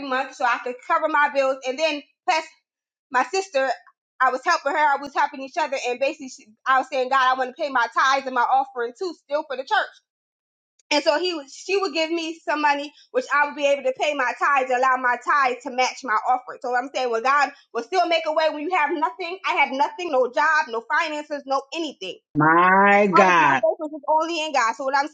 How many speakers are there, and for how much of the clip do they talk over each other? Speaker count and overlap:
2, about 2%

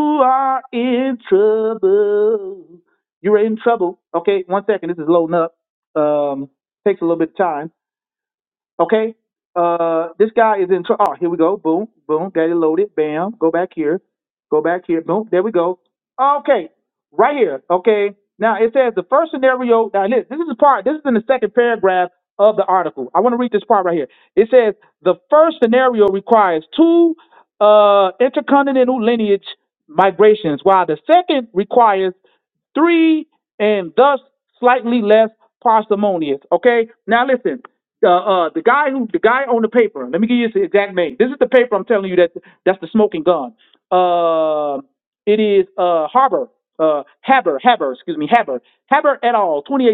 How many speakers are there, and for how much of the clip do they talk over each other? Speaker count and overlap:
1, no overlap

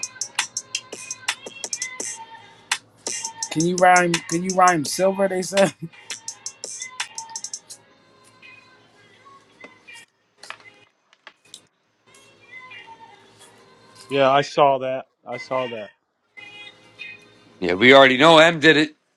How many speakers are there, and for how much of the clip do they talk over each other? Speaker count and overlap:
3, no overlap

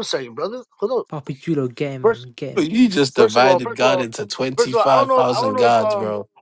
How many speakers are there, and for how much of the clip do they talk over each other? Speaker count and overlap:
3, about 41%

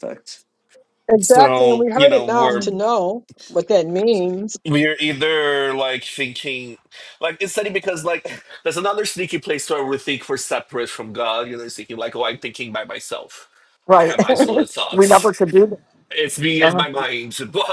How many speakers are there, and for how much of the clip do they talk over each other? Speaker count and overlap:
3, about 11%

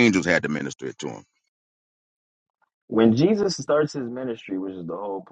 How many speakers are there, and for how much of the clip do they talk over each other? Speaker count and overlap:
2, no overlap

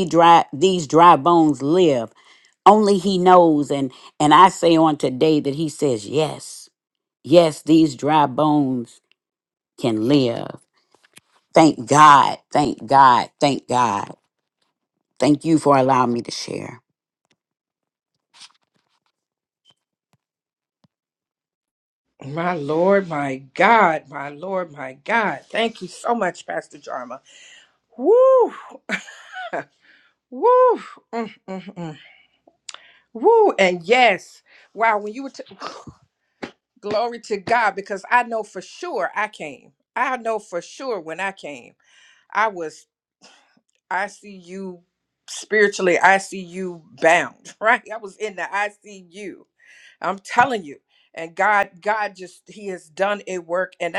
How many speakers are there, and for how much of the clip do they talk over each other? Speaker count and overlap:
2, no overlap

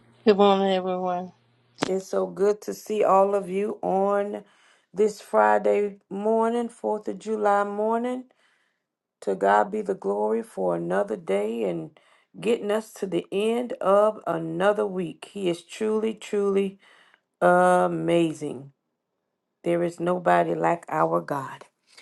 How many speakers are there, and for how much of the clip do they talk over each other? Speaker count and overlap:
2, no overlap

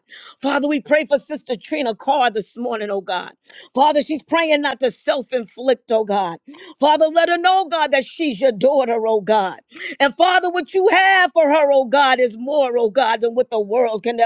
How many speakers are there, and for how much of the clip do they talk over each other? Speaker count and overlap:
1, no overlap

